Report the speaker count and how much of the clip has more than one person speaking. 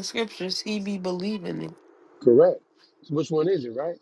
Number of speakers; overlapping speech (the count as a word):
two, no overlap